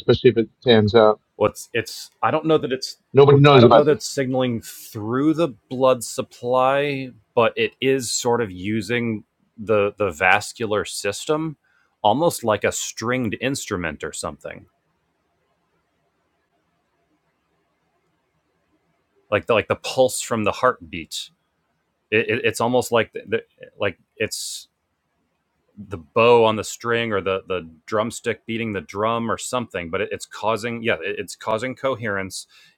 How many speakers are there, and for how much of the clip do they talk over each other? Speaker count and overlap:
two, about 1%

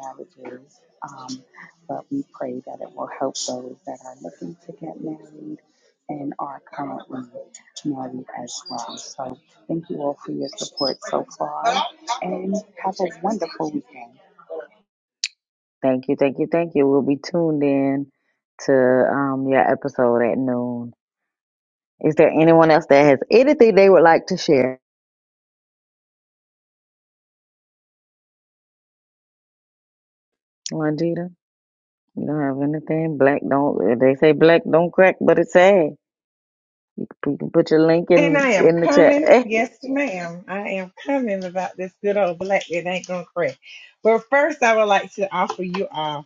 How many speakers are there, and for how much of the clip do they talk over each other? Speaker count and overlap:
three, about 3%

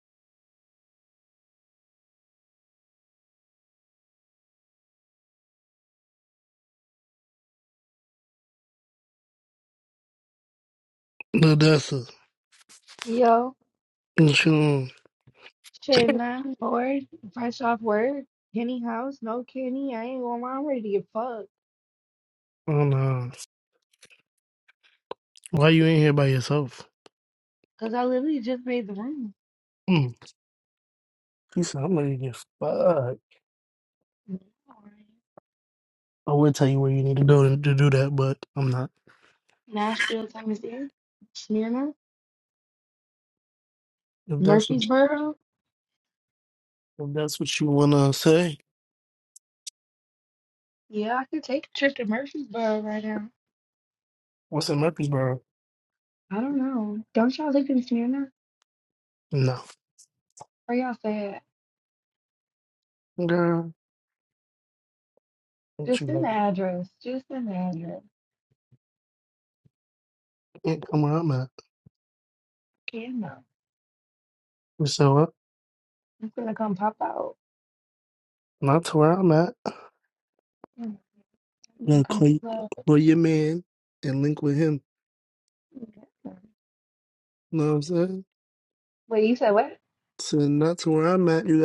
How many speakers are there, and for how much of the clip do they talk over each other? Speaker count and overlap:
two, about 2%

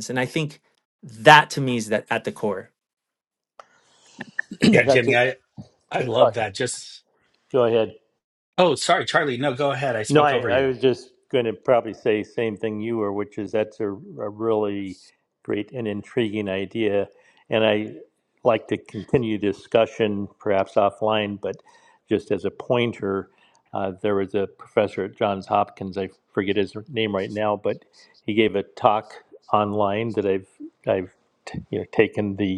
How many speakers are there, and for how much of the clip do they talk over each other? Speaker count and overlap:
three, about 4%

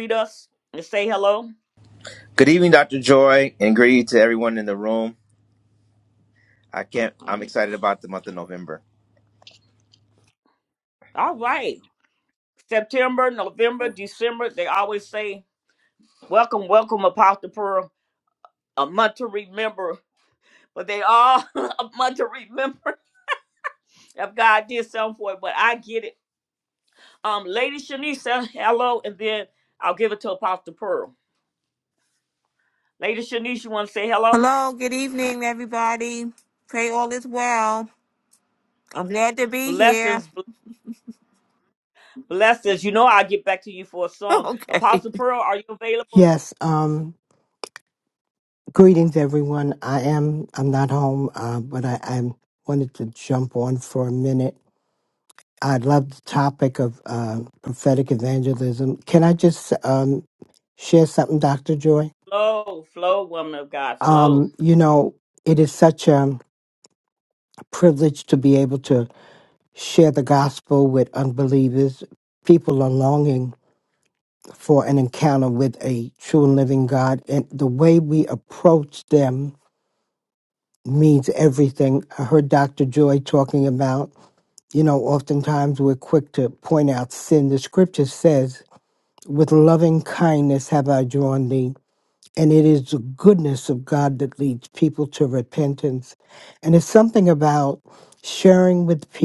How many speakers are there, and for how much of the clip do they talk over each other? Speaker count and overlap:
four, about 2%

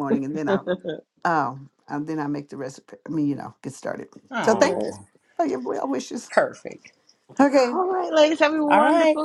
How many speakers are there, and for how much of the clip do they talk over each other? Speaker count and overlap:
three, about 13%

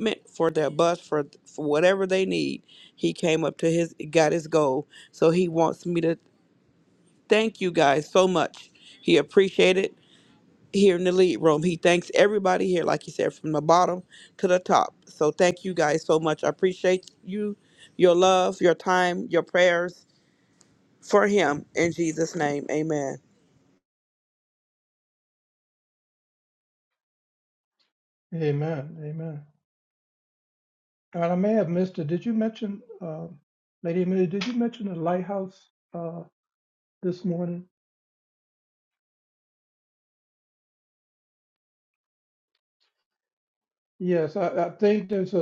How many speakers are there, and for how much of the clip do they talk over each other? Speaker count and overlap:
two, no overlap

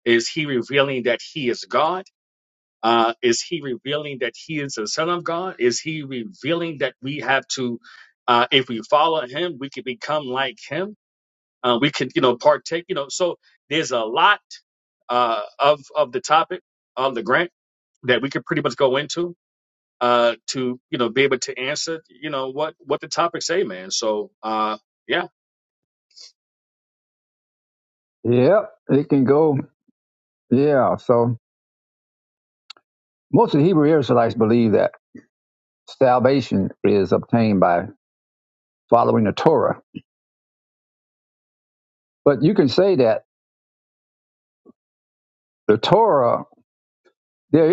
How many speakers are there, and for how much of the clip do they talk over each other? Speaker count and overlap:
two, no overlap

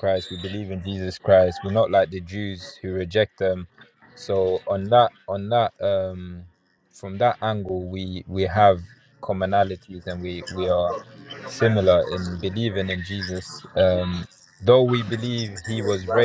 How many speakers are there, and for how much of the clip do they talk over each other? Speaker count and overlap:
one, no overlap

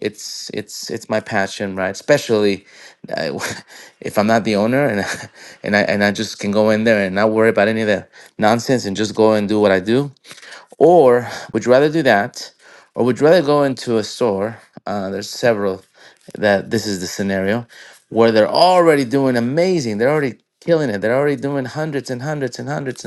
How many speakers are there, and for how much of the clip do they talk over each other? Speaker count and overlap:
one, no overlap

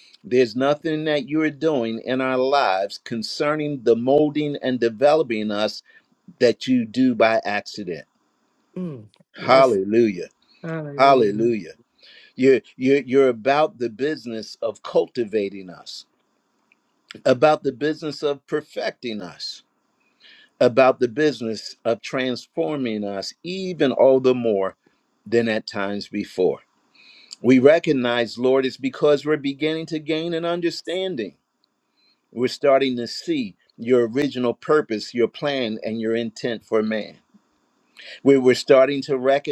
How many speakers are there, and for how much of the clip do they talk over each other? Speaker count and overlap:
two, about 2%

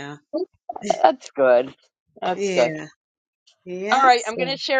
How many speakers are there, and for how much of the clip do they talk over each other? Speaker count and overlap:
two, about 22%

